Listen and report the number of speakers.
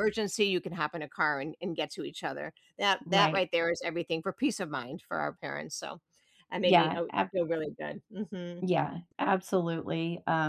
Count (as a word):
two